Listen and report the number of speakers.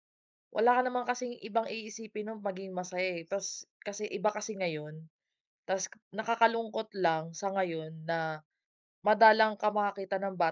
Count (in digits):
1